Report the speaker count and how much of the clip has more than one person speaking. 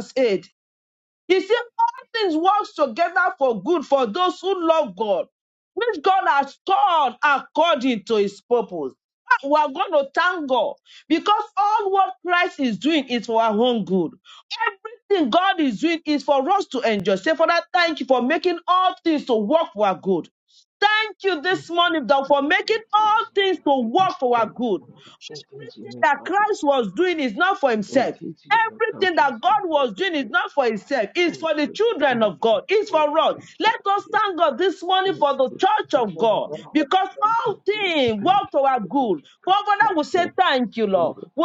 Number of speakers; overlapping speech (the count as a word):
one, no overlap